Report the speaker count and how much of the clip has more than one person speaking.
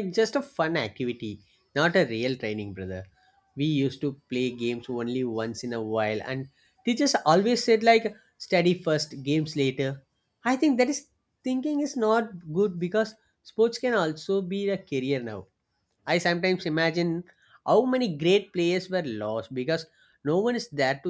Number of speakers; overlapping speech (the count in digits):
1, no overlap